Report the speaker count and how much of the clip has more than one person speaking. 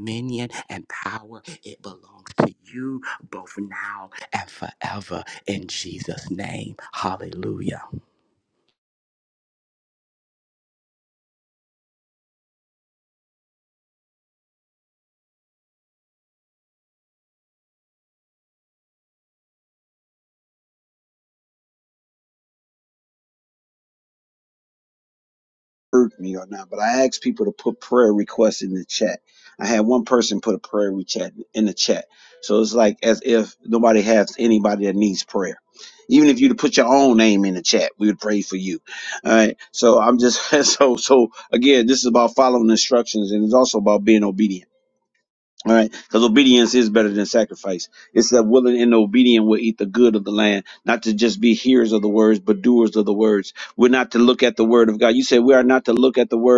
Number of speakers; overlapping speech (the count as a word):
two, no overlap